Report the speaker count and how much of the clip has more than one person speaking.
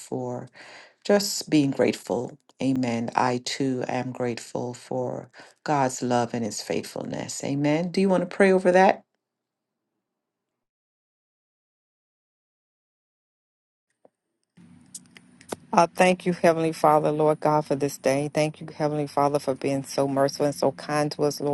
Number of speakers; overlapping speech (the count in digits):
2, no overlap